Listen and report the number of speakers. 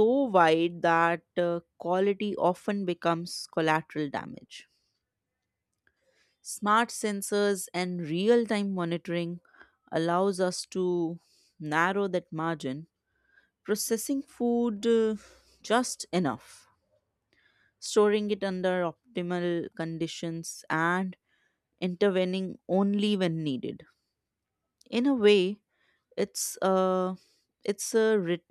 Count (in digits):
1